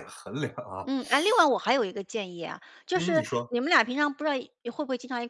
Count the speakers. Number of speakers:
2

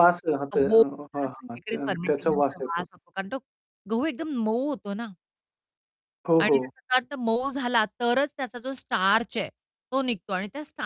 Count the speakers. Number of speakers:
2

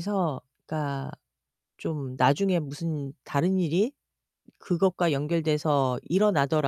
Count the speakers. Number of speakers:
1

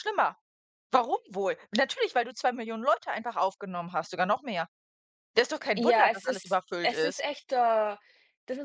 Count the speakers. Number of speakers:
2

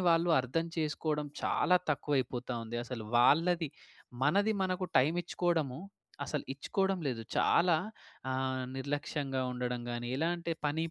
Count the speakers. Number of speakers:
1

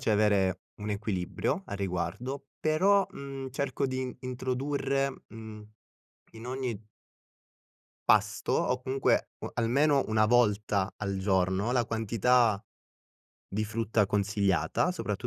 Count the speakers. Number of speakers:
1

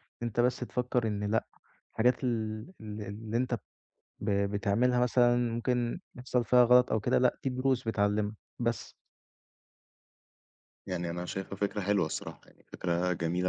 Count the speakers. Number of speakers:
2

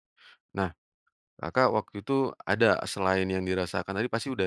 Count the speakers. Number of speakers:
1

